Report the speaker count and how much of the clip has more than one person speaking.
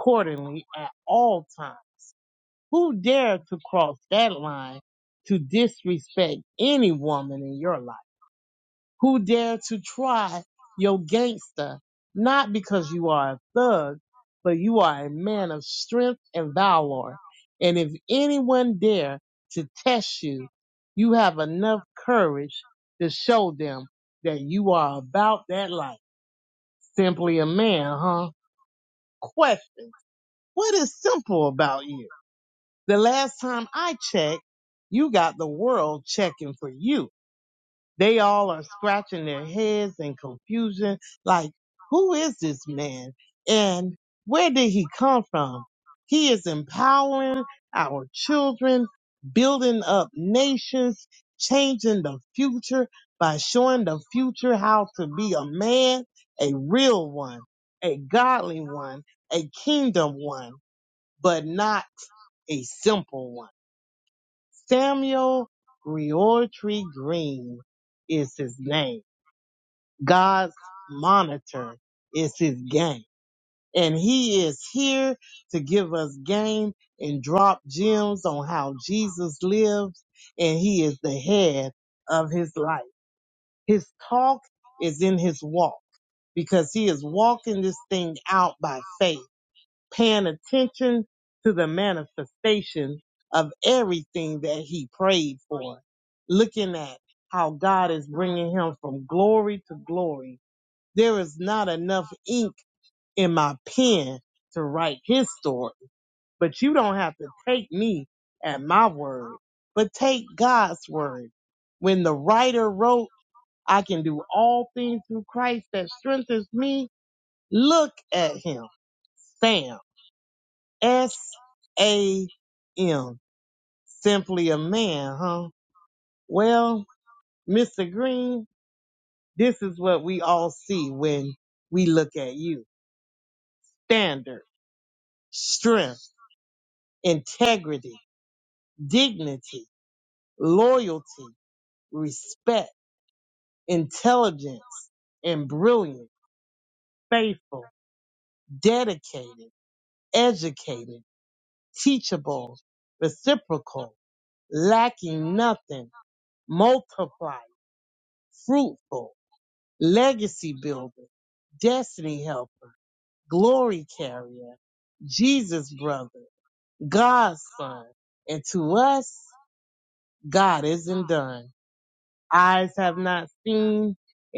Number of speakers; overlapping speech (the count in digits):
1, no overlap